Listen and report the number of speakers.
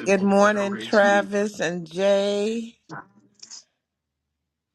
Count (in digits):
1